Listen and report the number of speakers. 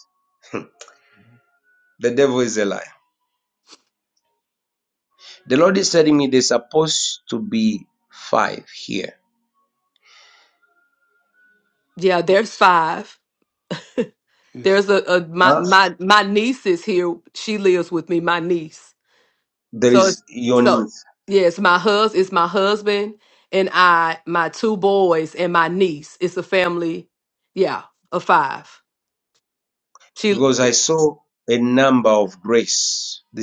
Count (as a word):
two